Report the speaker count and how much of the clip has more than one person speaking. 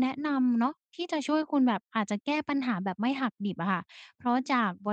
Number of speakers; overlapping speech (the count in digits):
1, no overlap